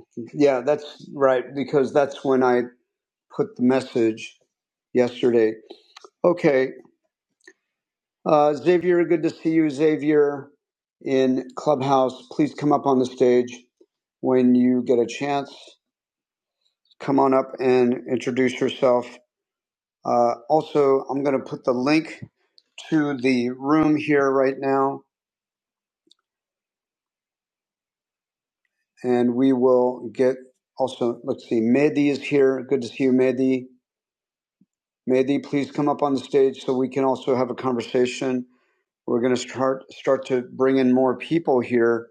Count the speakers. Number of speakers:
one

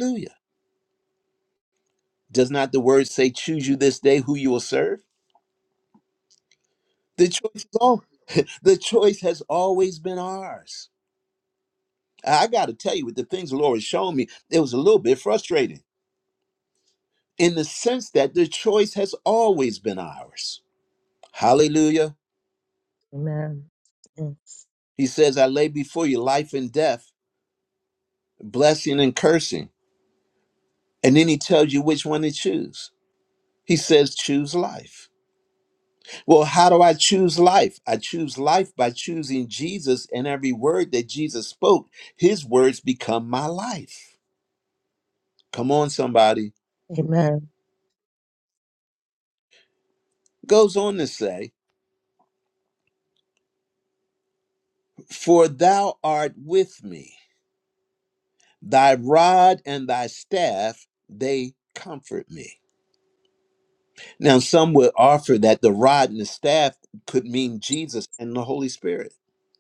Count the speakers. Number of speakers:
two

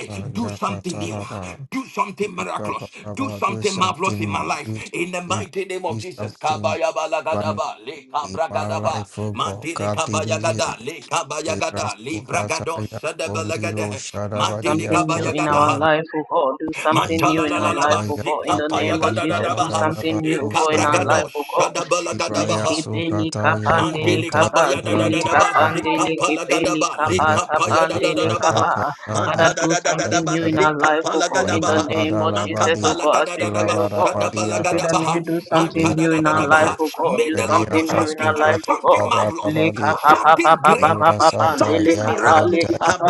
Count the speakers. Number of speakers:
three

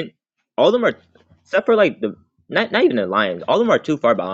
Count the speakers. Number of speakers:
one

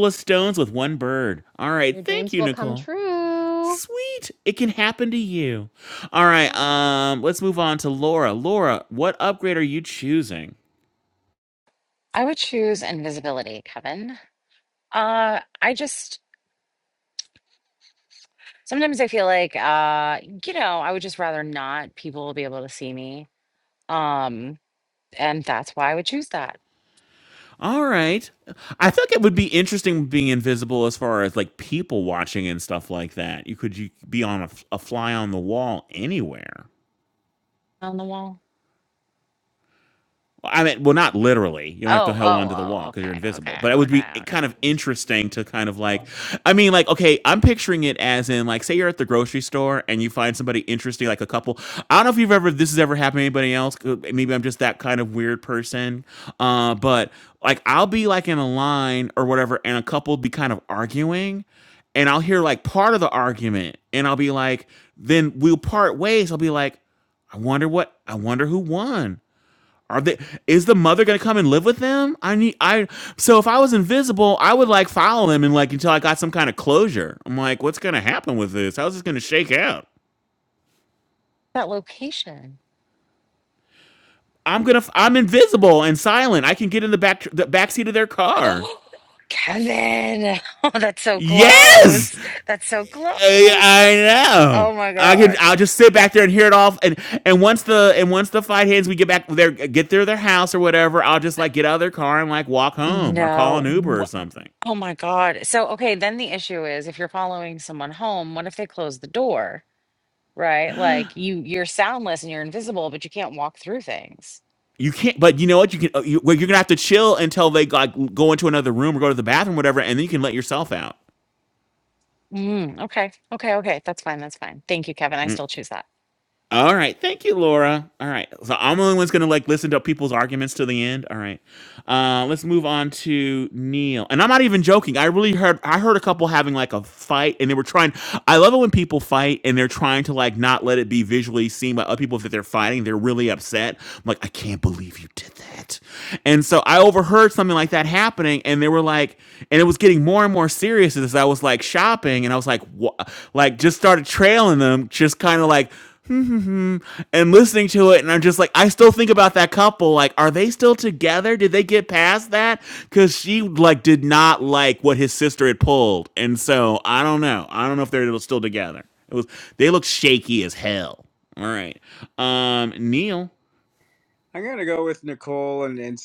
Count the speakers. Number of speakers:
four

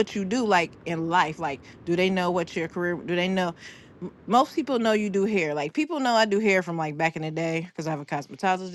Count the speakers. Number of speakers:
one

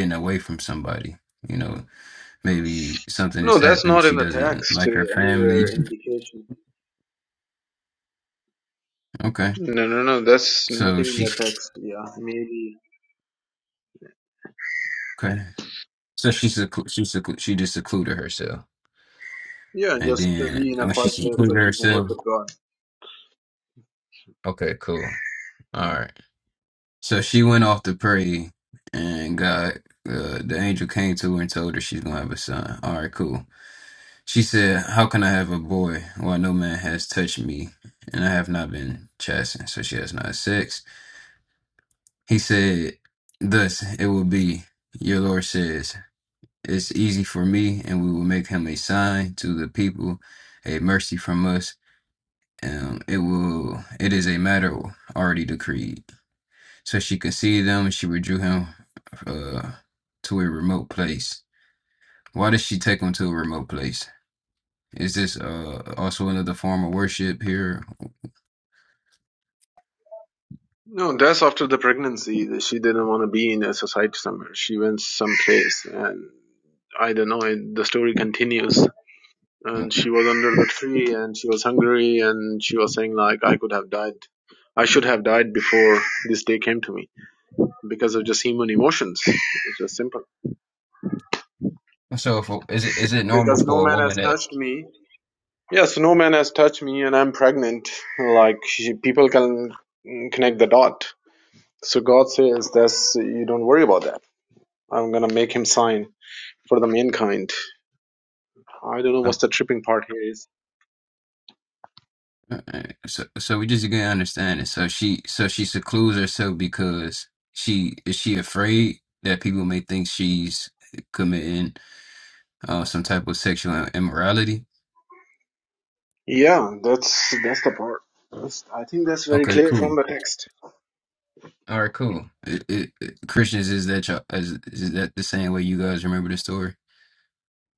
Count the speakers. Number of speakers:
two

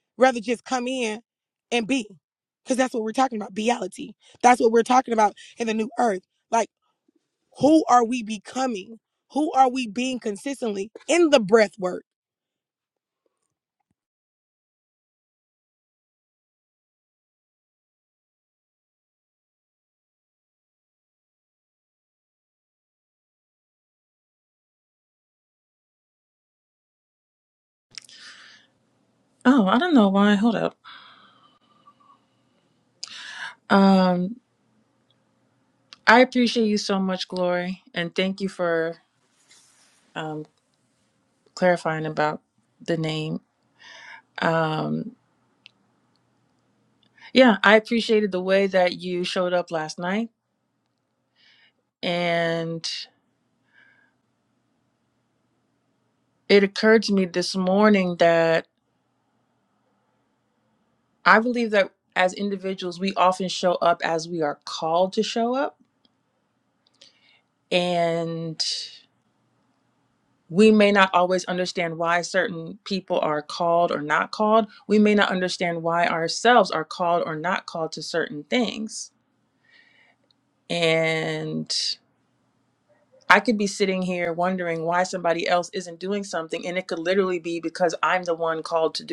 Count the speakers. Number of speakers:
two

